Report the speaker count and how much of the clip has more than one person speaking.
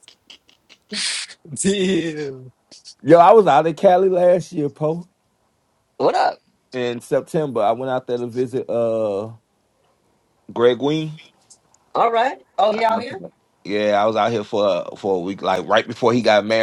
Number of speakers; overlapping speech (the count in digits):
2, about 3%